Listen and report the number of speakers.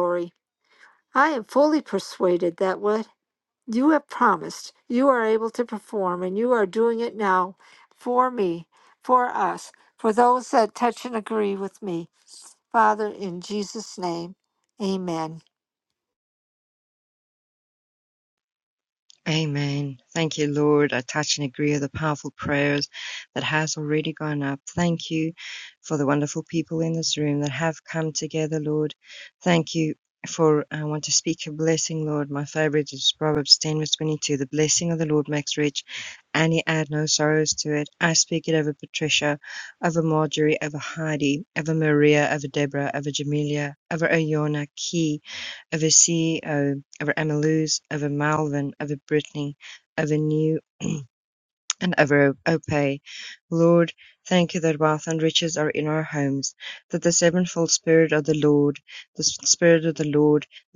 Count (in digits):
2